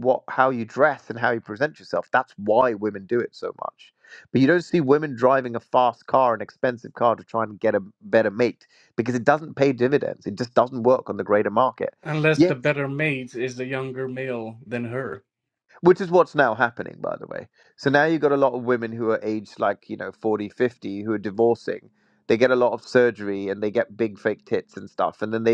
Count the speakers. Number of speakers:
2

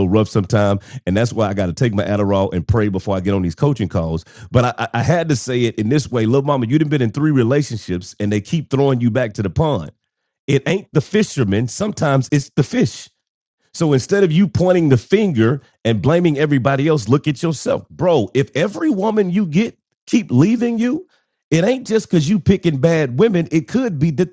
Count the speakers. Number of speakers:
1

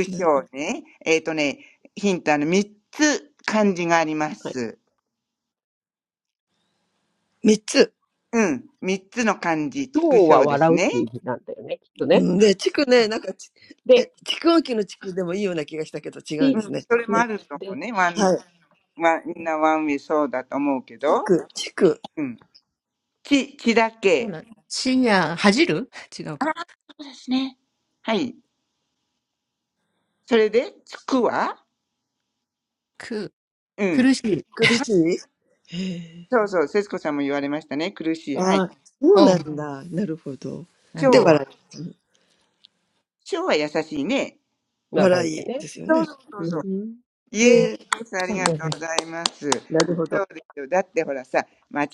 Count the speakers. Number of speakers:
4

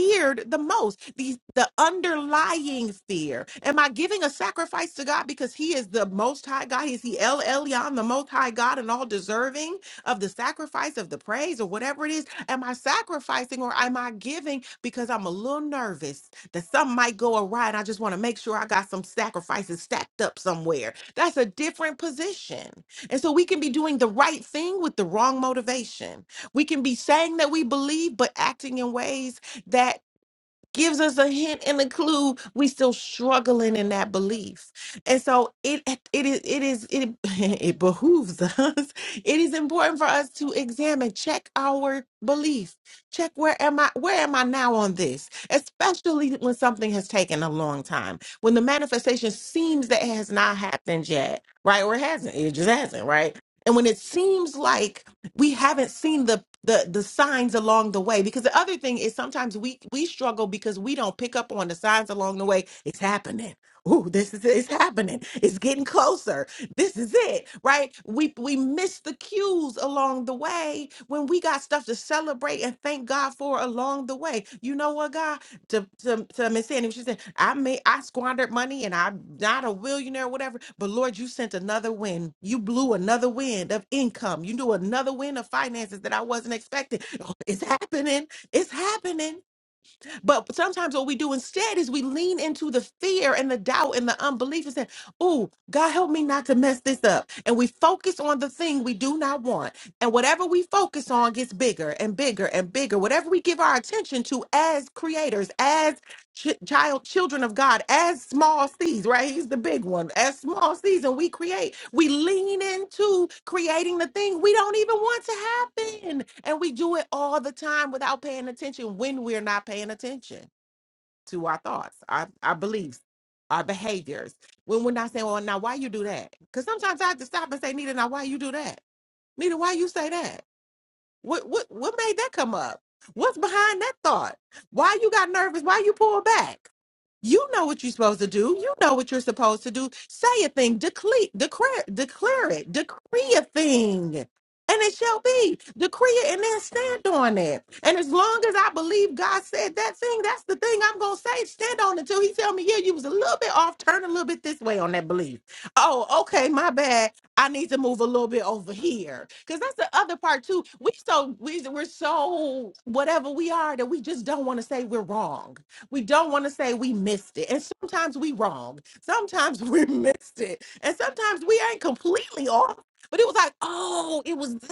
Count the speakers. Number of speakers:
1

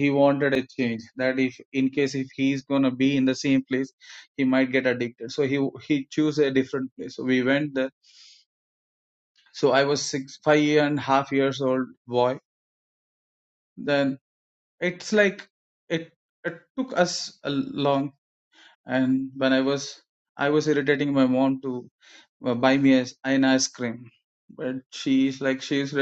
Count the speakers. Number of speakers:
1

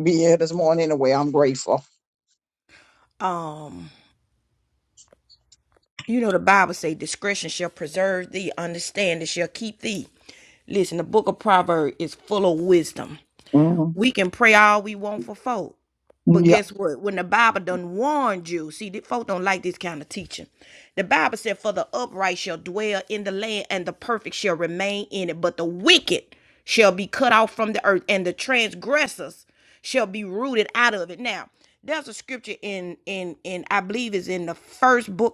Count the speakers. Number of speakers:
2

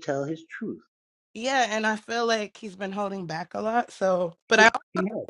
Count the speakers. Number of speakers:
2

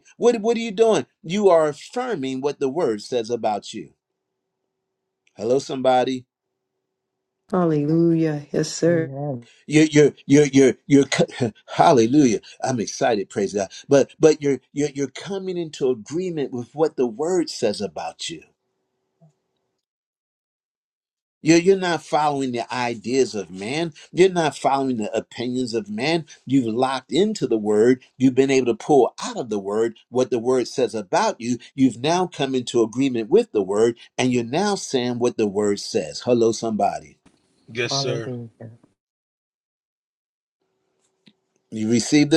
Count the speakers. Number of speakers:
3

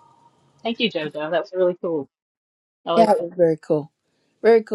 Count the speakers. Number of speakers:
2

